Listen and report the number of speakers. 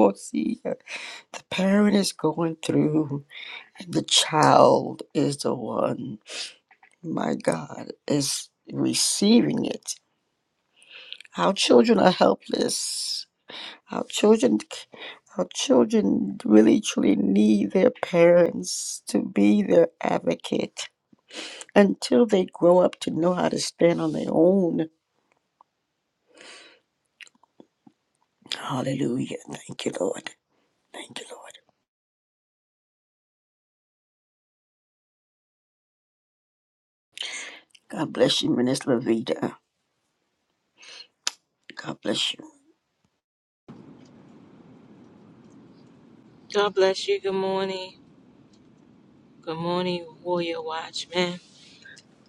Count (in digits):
2